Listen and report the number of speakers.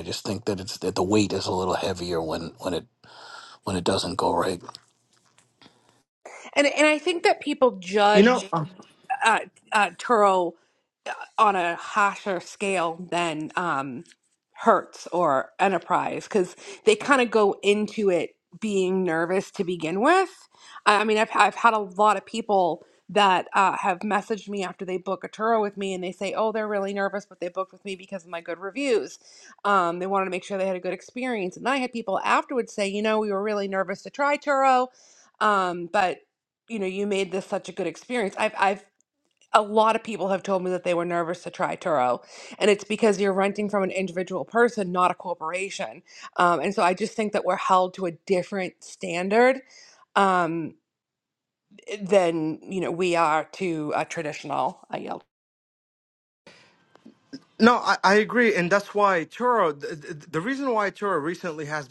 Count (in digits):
3